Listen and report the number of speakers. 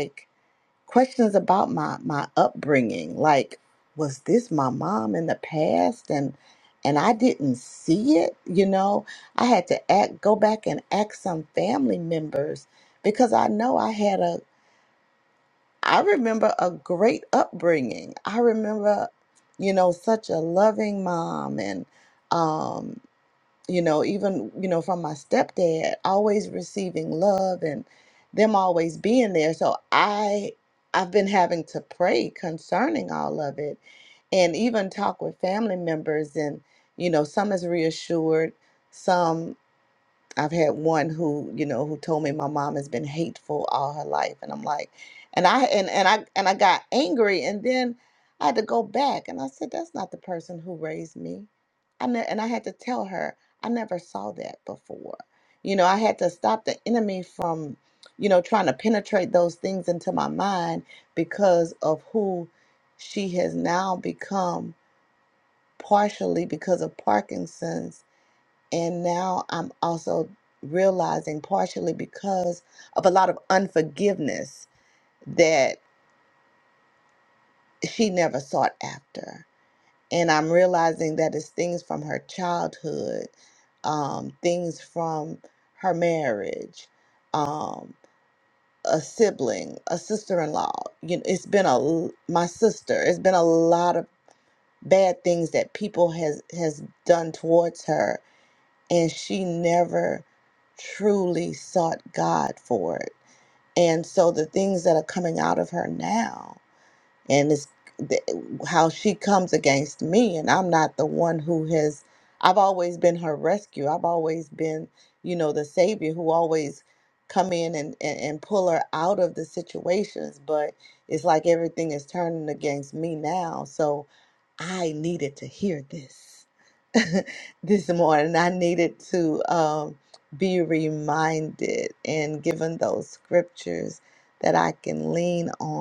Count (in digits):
1